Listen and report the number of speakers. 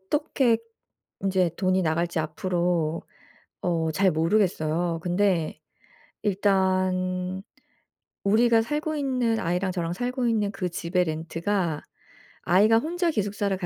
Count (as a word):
one